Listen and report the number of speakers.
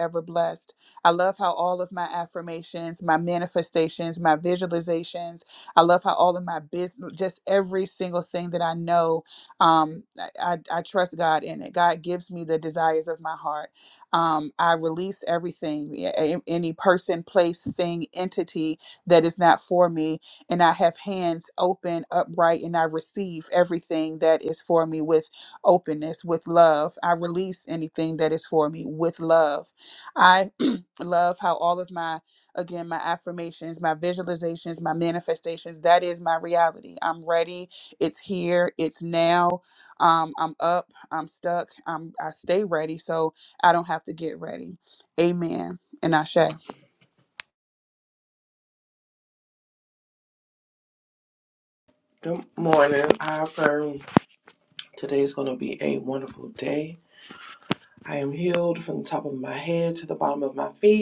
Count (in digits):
2